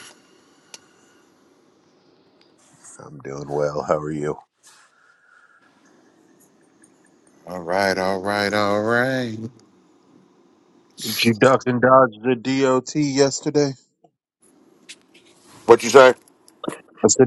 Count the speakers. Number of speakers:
3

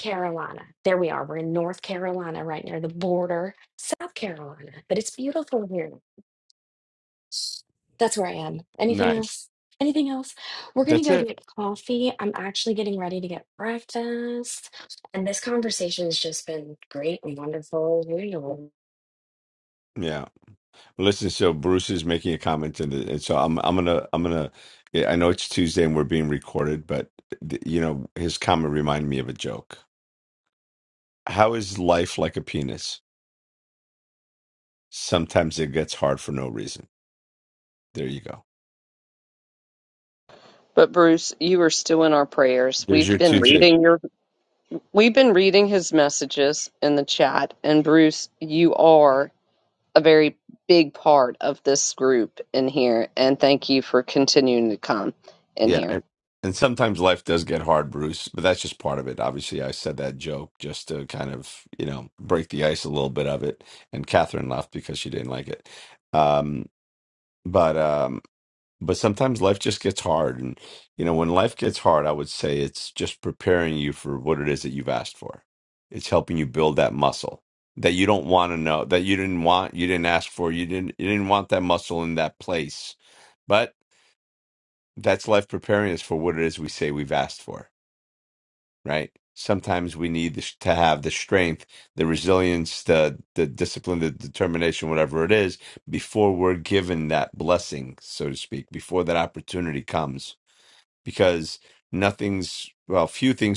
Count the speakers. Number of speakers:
3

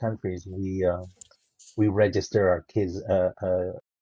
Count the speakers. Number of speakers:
1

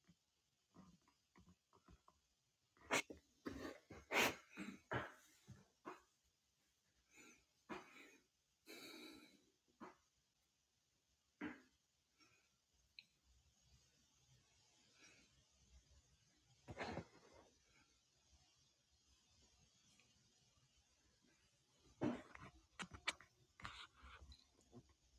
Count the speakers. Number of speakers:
0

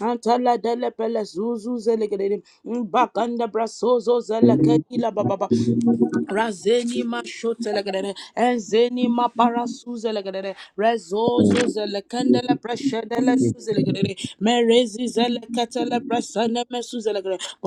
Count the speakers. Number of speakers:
2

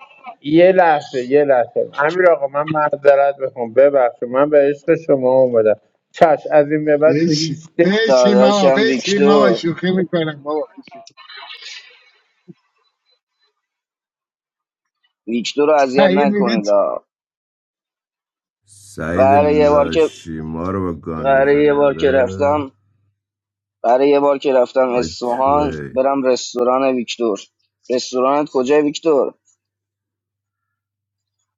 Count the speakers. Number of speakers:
4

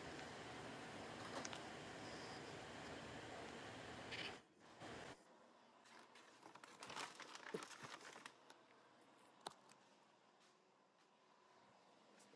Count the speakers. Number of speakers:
0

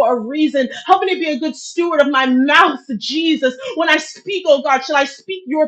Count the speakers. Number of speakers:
1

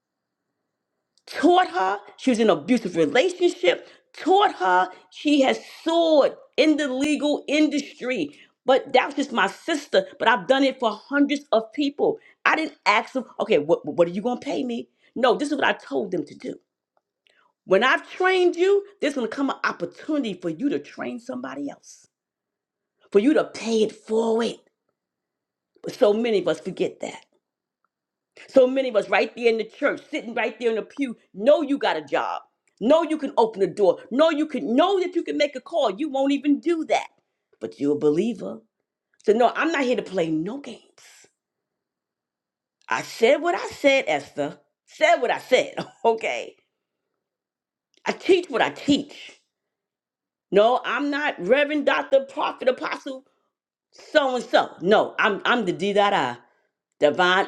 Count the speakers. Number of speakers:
1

